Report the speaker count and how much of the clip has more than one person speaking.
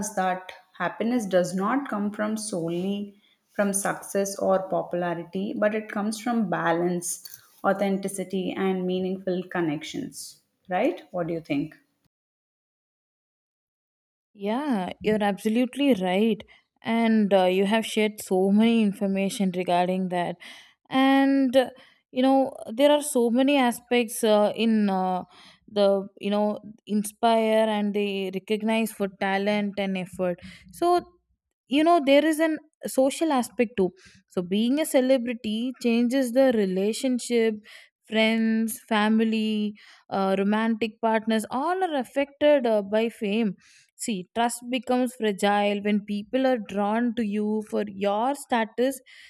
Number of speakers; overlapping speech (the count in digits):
2, no overlap